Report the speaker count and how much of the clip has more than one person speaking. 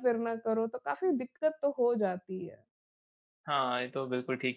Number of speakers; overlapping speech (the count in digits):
2, no overlap